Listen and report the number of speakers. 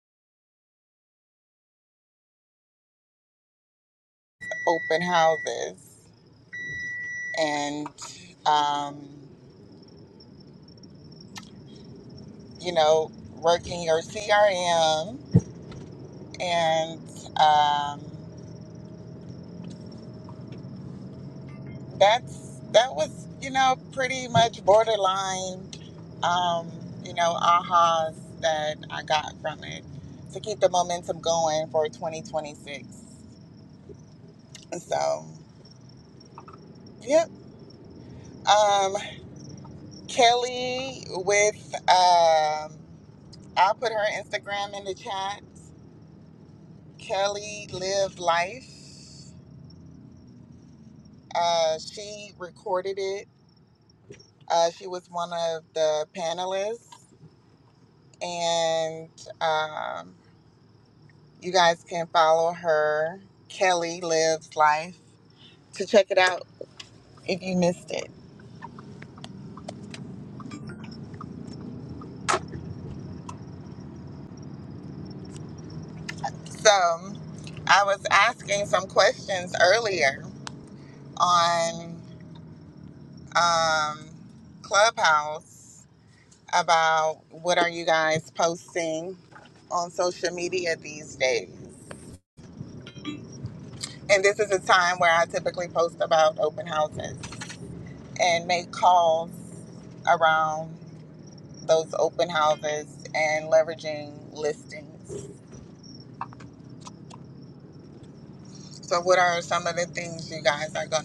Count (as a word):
one